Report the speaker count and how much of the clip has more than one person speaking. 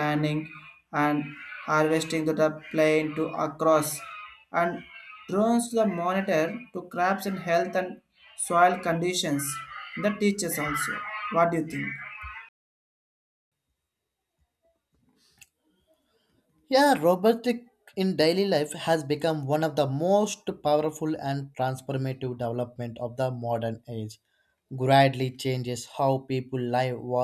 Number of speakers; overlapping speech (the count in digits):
2, no overlap